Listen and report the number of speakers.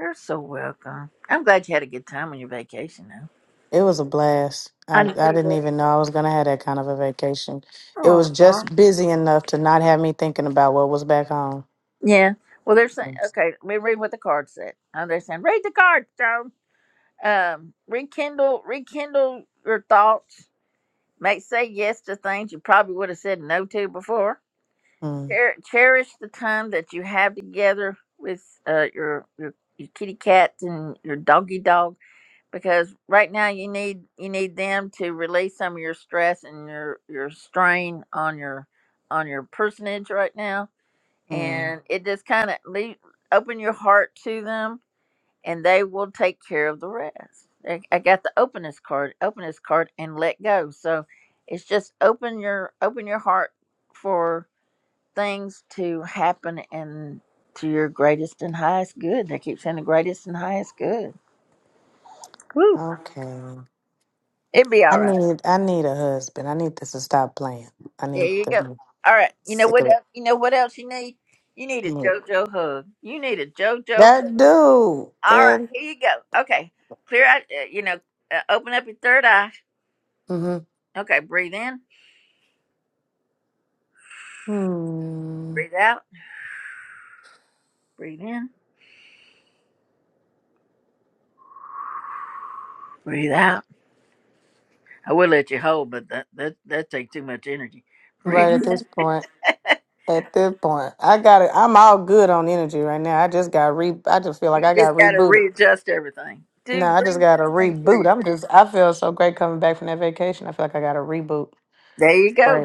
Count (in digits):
2